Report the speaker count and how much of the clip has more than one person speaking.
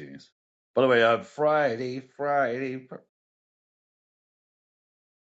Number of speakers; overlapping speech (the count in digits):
1, no overlap